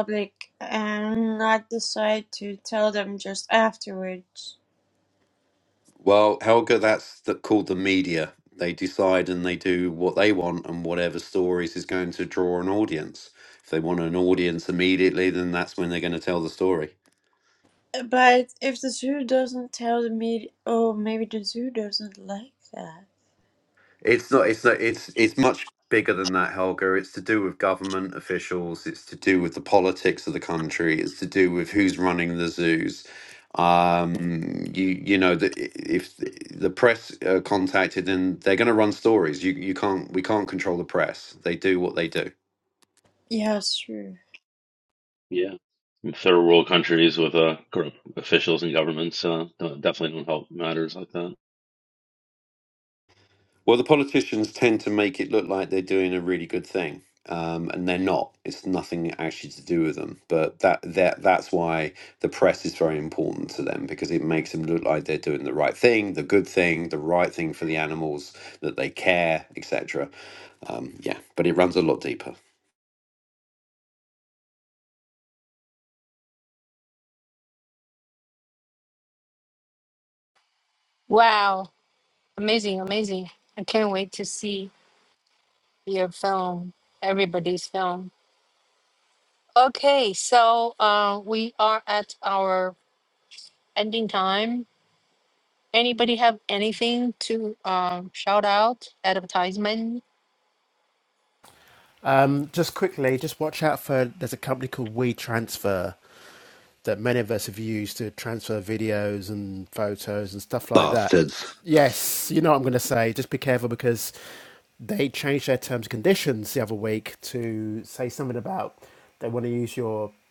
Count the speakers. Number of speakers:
five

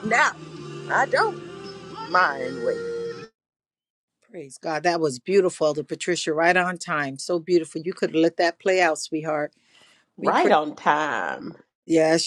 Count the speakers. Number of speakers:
three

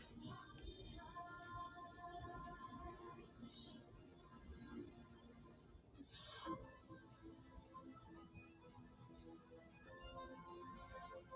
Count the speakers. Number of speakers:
zero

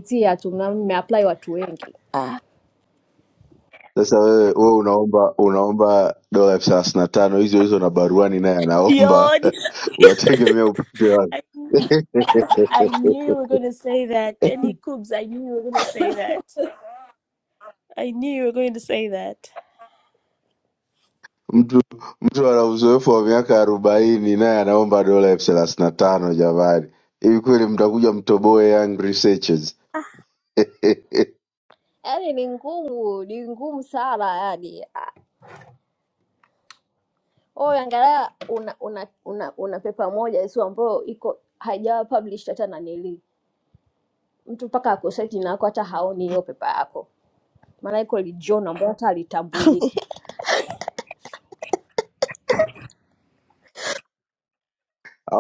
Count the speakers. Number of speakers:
three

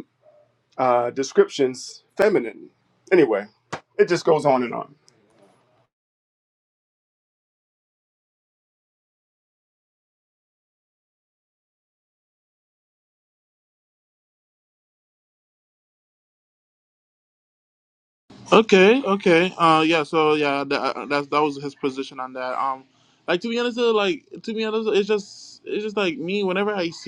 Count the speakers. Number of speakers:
two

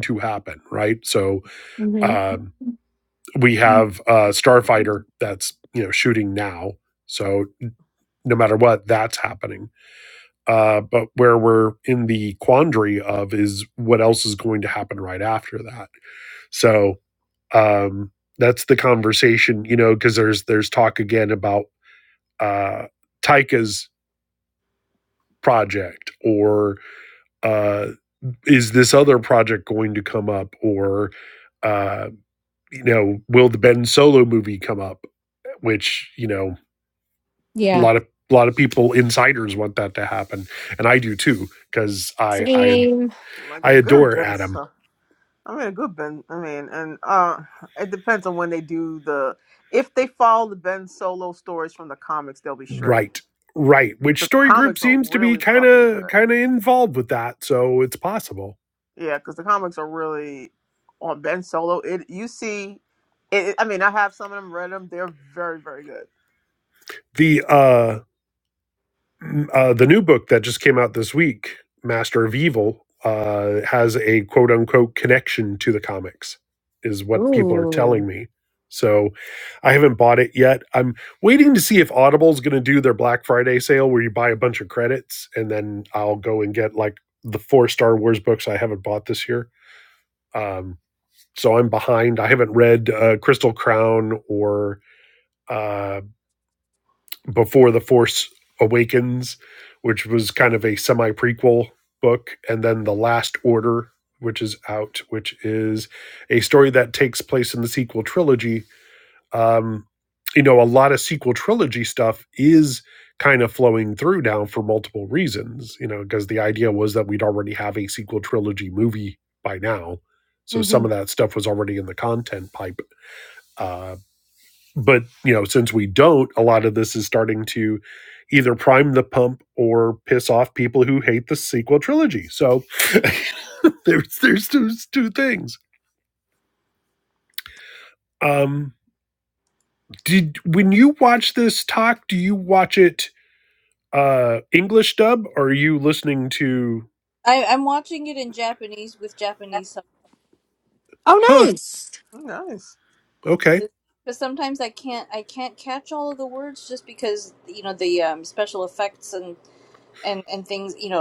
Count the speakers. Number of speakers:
four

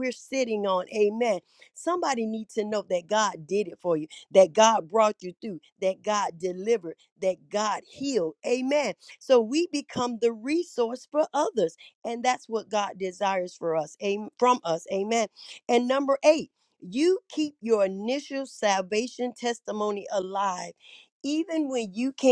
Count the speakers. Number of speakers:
one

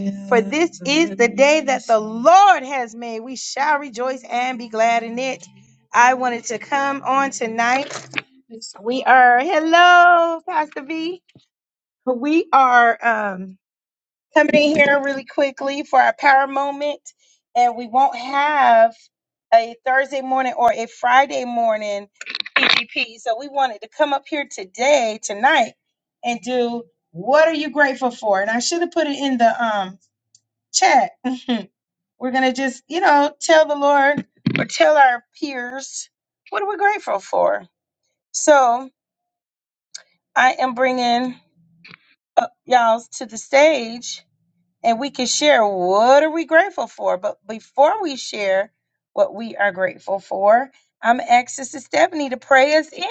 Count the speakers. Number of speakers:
one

